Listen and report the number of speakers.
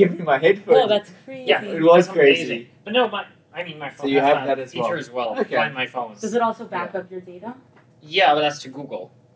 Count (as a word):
three